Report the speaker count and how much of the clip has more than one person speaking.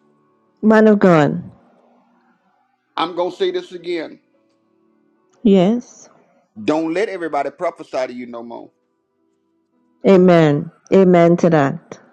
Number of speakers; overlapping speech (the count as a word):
two, no overlap